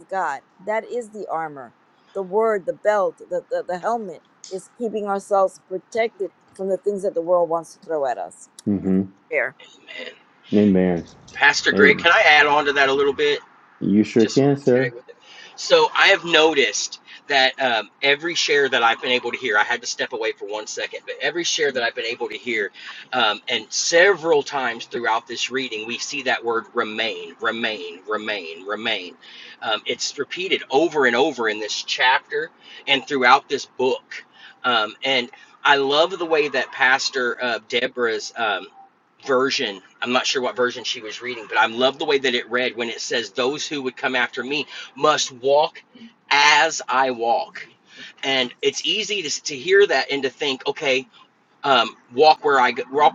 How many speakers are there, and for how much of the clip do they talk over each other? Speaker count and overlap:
three, about 2%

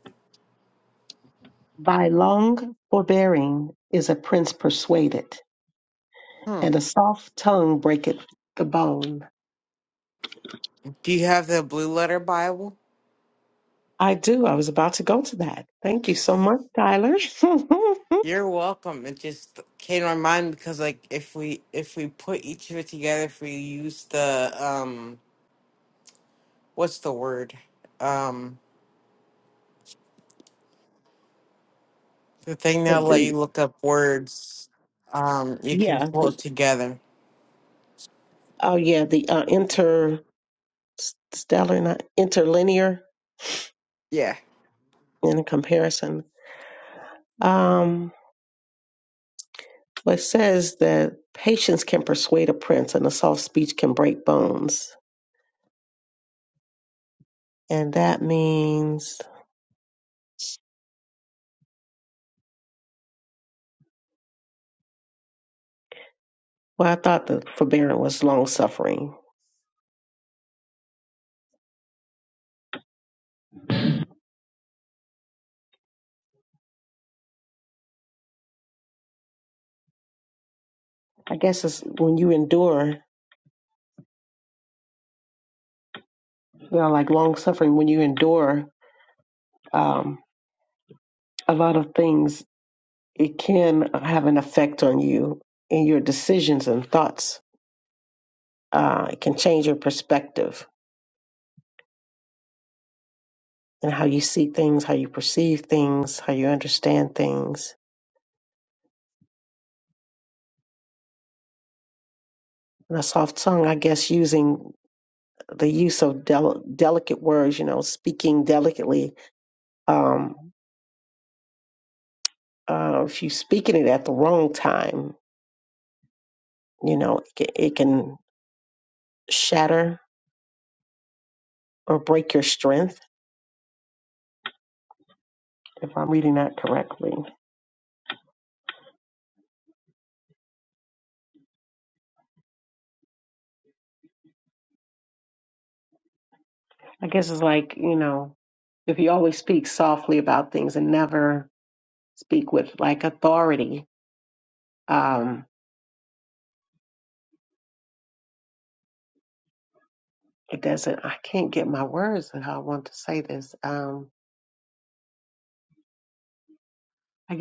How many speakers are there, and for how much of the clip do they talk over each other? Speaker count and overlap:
two, about 1%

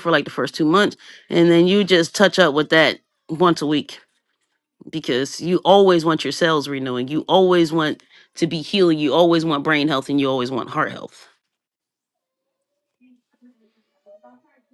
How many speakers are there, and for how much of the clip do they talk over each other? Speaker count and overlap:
one, no overlap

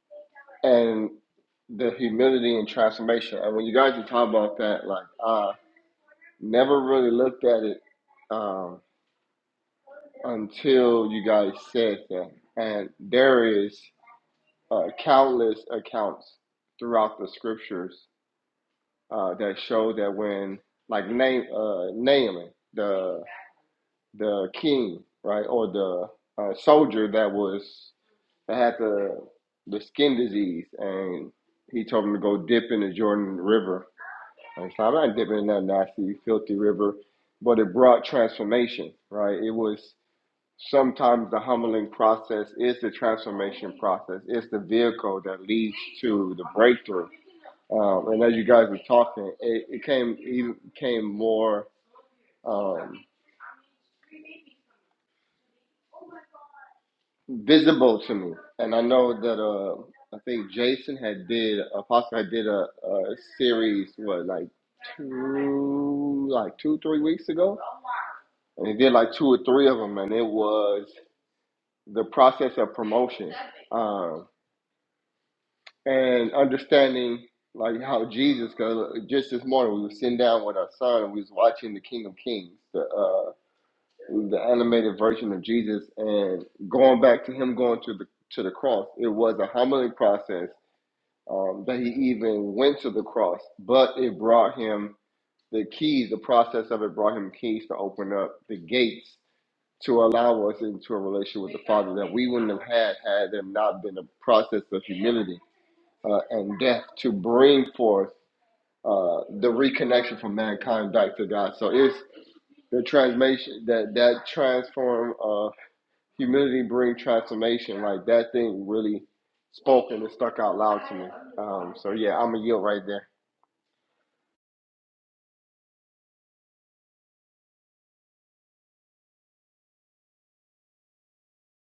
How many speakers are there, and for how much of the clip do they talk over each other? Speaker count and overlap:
one, no overlap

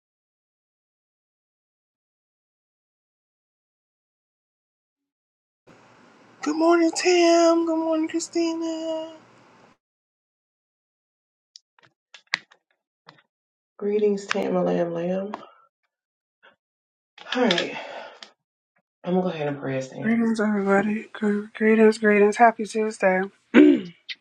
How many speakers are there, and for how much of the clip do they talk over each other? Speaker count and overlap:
three, about 1%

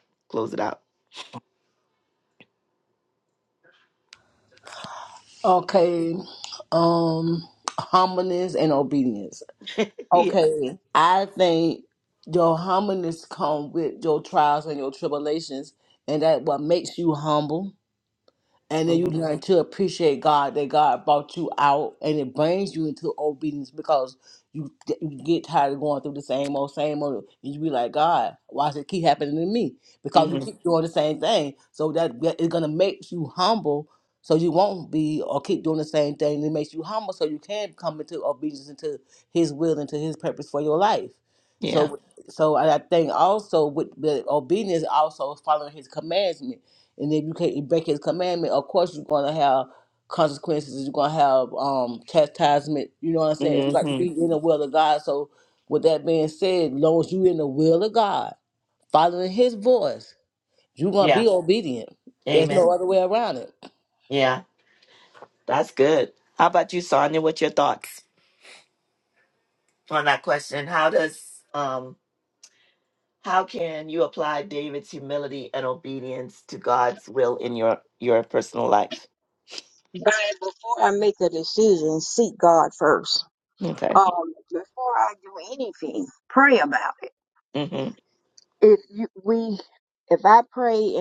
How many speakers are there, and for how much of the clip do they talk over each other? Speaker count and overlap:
three, about 3%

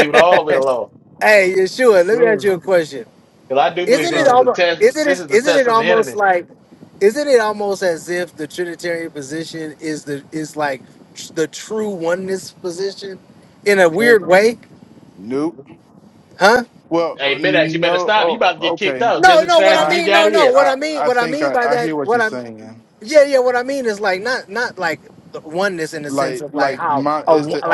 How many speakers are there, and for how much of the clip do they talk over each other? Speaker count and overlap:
three, about 36%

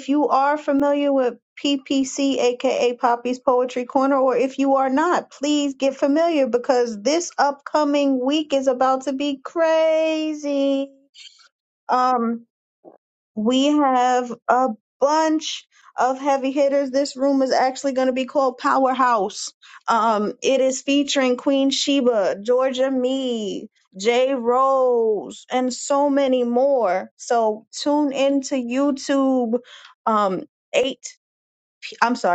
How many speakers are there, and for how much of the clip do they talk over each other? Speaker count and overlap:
one, no overlap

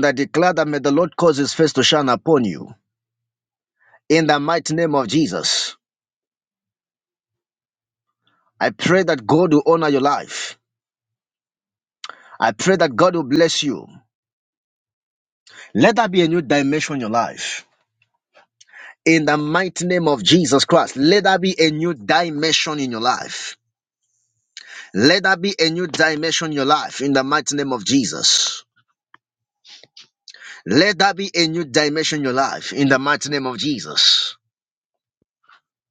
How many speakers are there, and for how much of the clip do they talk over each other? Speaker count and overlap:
one, no overlap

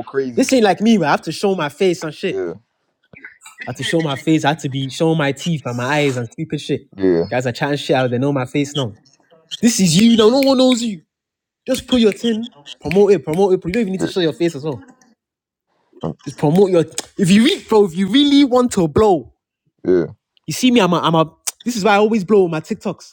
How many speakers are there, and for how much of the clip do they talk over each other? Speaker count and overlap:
two, about 1%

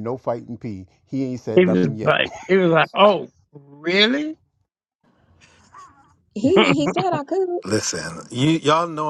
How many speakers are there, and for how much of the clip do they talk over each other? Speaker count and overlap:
four, about 7%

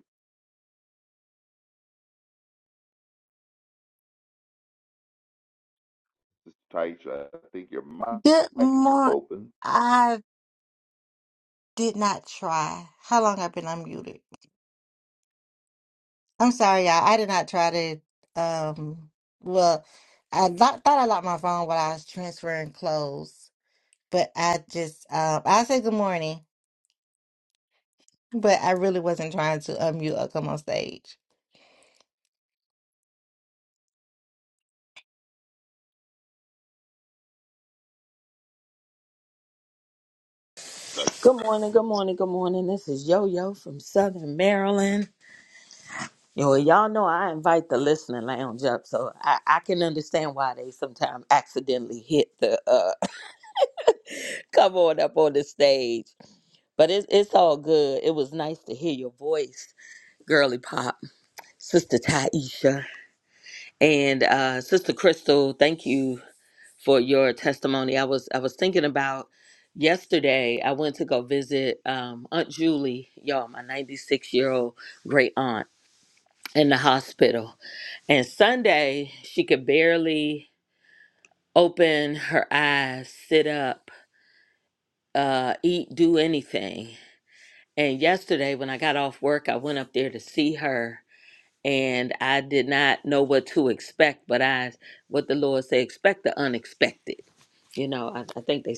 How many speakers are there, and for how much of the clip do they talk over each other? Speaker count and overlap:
three, about 1%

